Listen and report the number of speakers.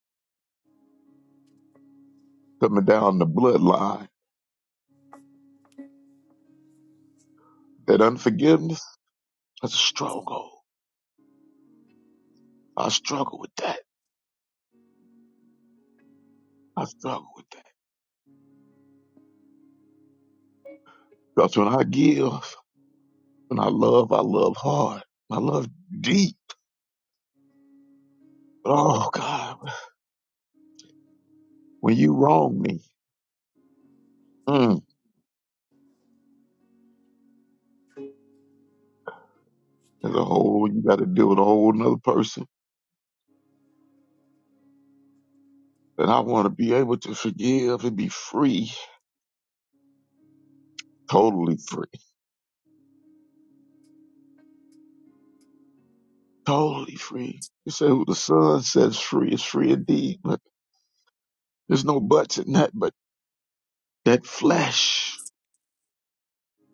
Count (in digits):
1